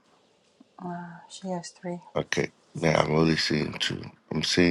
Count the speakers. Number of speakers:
two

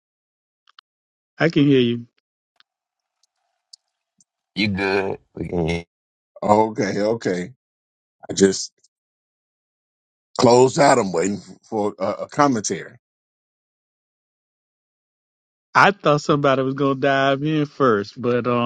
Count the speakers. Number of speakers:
three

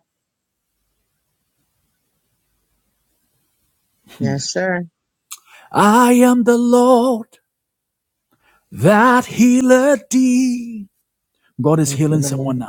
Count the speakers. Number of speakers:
two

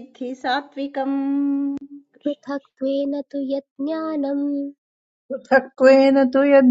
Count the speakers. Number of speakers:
three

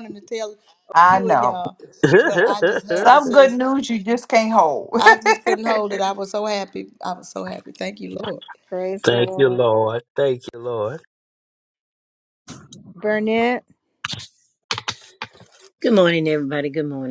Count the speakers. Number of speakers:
five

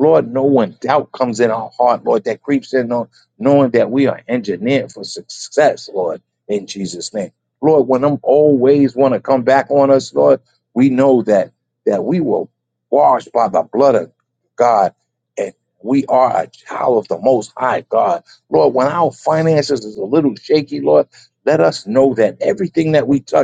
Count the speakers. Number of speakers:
one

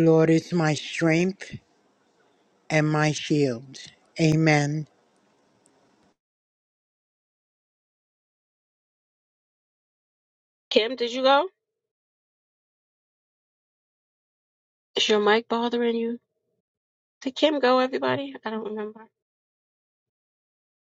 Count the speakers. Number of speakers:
two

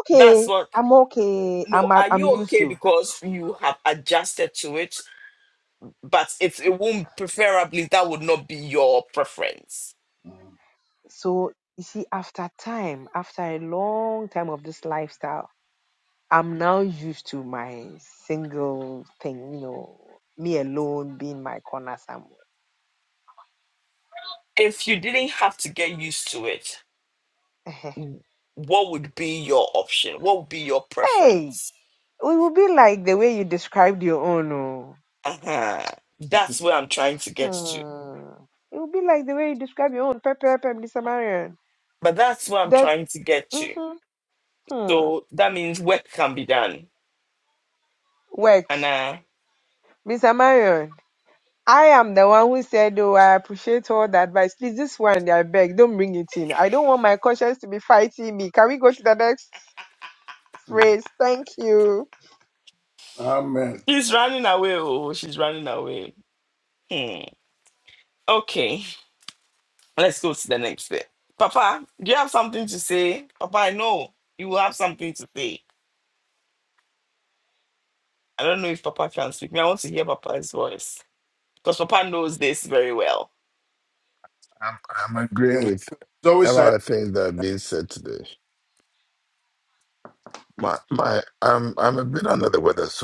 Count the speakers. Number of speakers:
four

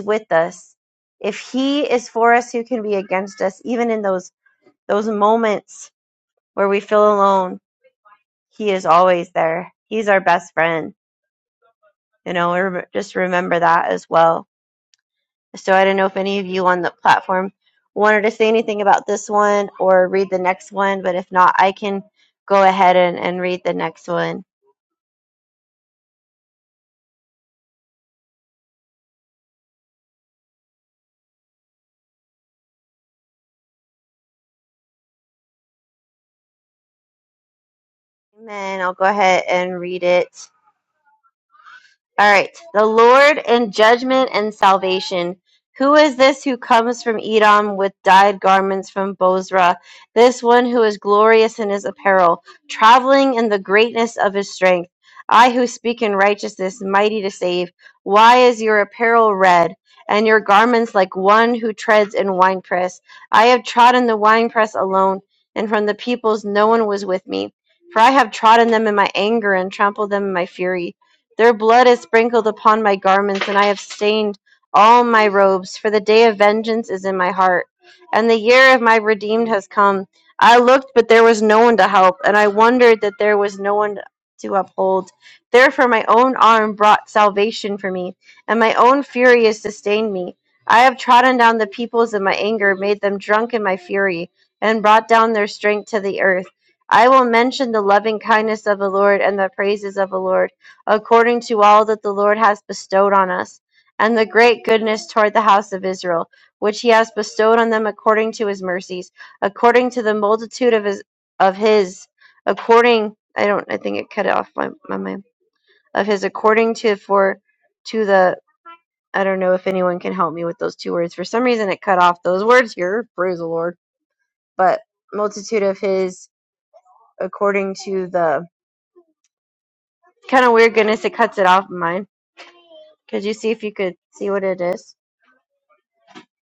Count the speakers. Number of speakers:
one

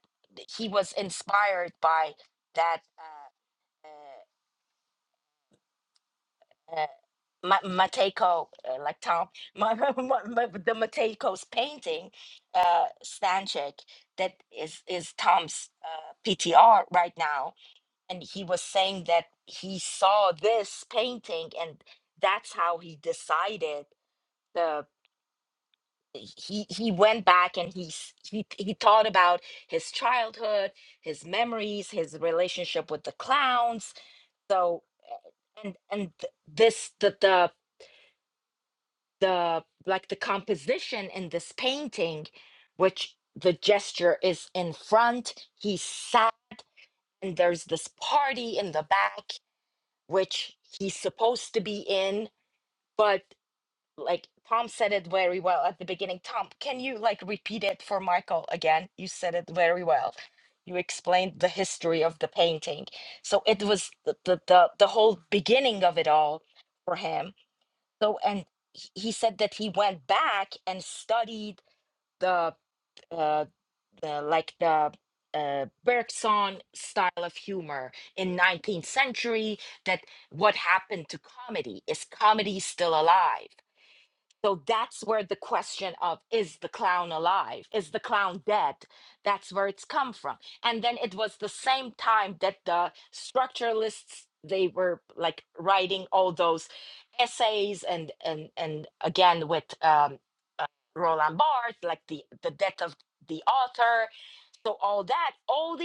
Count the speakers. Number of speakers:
one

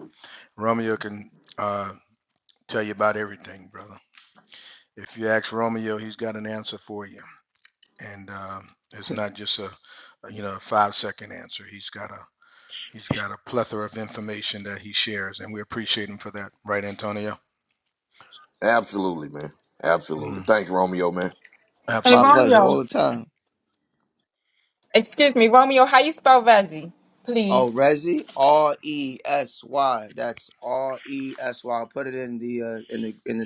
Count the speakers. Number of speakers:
four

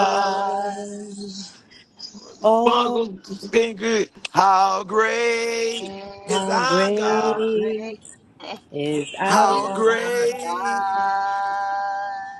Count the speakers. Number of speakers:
three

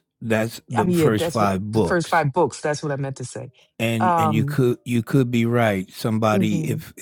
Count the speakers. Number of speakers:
two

